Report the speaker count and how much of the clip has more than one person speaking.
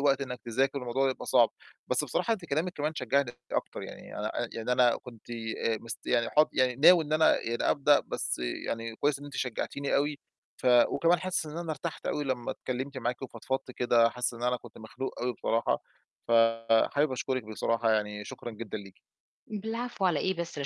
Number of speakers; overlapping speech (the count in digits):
2, no overlap